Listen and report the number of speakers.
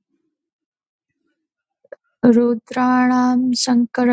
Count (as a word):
one